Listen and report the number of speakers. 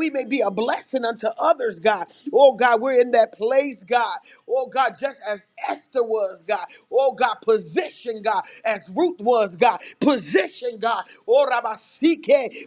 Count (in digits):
1